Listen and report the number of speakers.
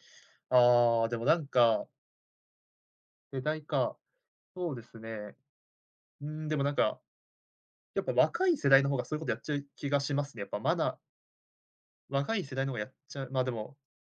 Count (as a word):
one